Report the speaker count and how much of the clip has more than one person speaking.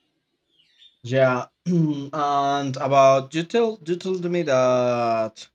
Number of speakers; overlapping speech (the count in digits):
1, no overlap